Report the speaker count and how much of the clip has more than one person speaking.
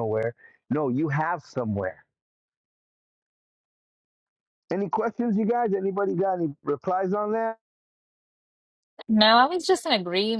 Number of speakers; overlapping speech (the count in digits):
2, no overlap